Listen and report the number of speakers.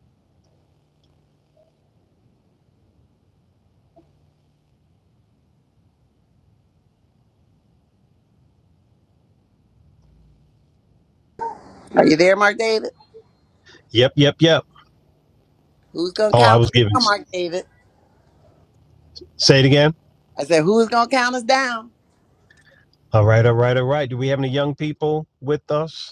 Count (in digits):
2